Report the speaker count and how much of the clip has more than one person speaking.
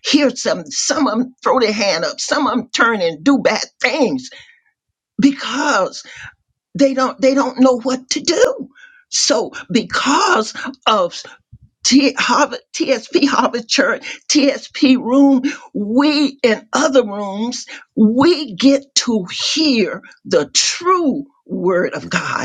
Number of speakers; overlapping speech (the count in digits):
1, no overlap